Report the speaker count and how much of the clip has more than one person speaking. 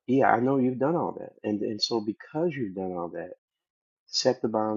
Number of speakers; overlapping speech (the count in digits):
1, no overlap